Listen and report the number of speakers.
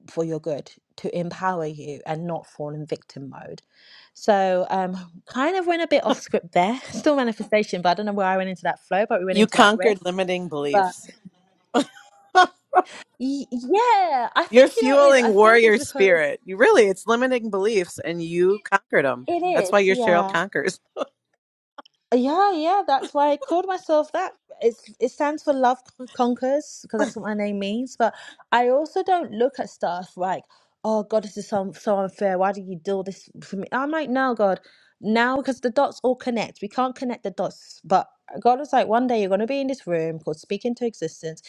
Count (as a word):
two